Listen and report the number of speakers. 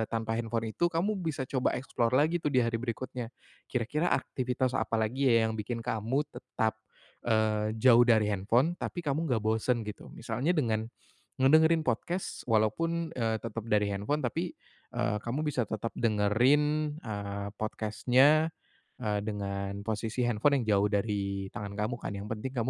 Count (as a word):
one